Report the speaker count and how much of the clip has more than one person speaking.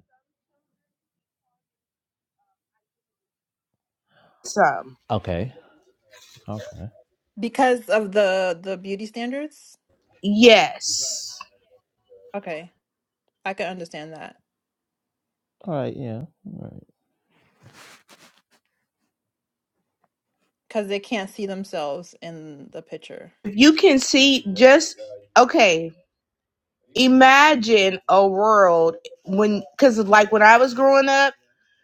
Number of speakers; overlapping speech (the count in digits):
3, no overlap